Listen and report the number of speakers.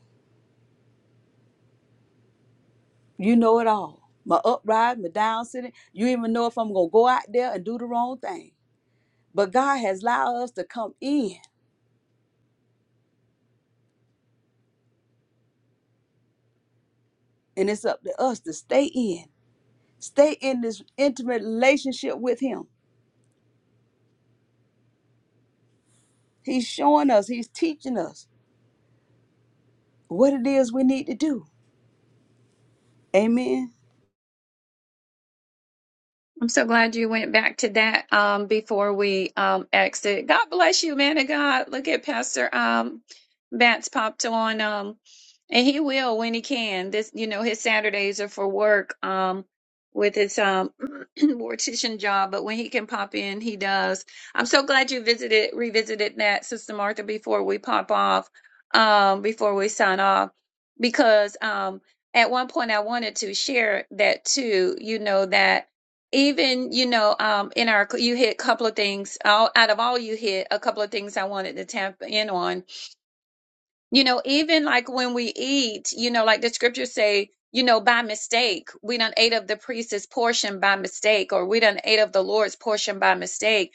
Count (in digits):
2